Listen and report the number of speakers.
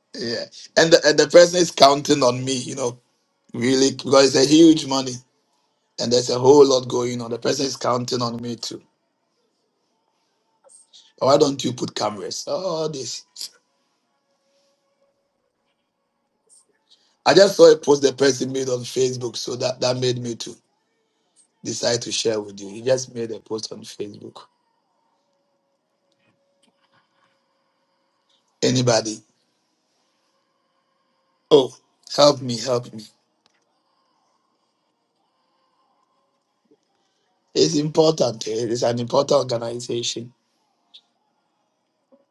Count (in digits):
1